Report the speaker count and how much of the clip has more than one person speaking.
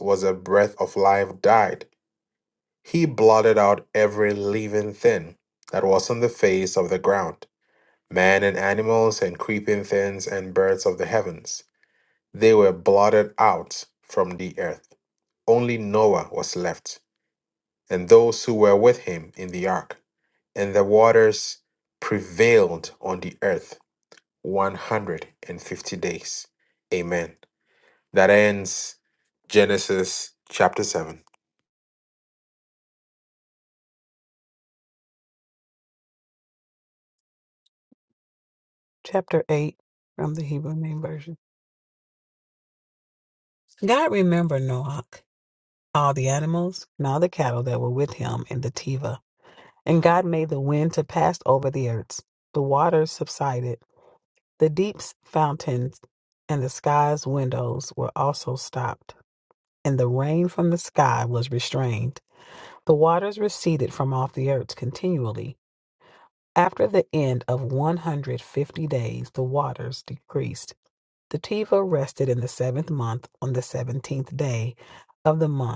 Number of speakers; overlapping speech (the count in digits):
2, no overlap